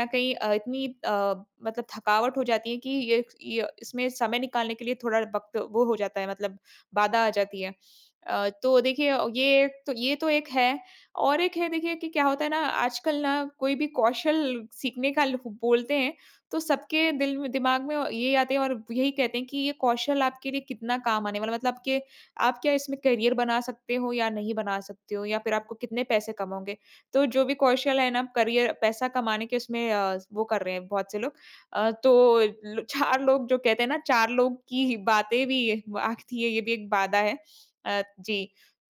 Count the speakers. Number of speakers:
1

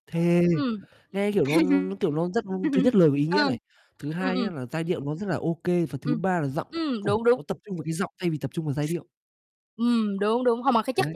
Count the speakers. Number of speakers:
2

